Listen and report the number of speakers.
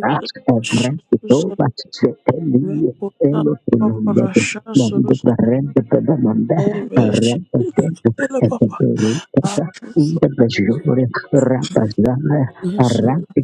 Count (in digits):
2